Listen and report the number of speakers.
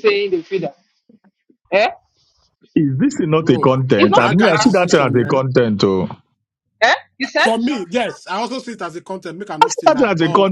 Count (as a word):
three